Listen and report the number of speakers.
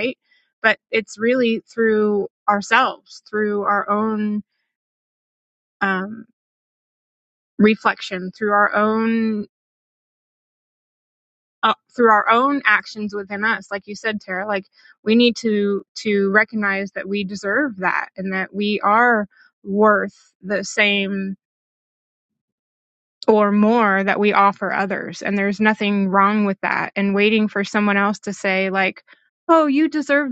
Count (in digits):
1